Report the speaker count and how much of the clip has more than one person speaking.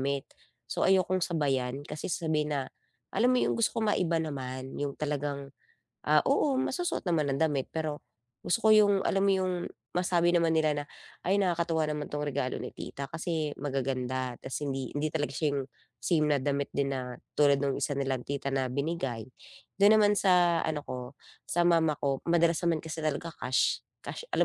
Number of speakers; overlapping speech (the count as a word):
one, no overlap